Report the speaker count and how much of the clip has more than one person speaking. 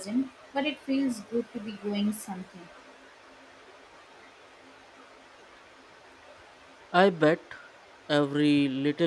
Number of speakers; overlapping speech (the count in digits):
2, no overlap